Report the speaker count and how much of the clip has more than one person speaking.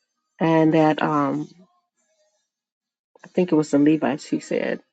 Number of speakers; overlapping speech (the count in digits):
1, no overlap